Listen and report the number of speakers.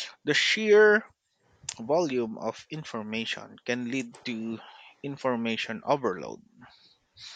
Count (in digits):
1